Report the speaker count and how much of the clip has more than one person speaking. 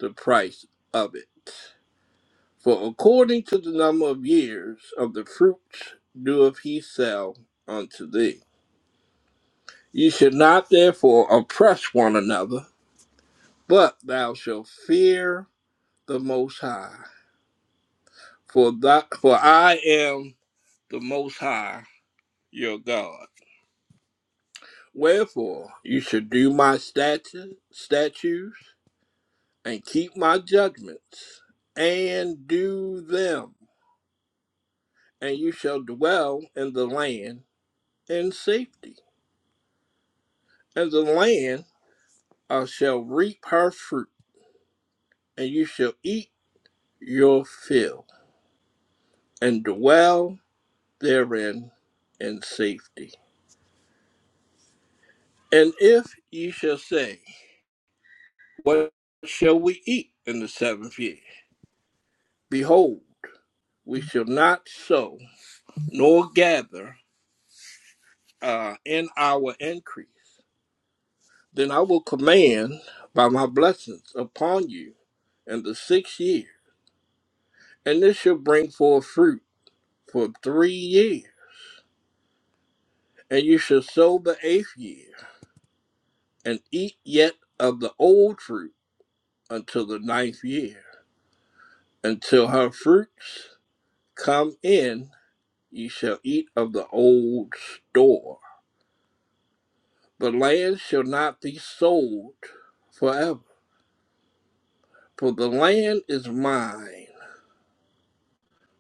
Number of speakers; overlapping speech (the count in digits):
1, no overlap